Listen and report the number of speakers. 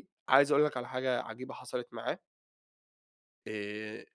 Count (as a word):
one